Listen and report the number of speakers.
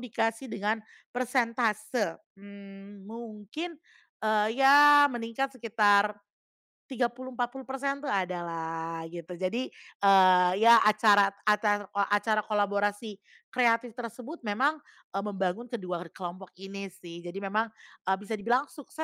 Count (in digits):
1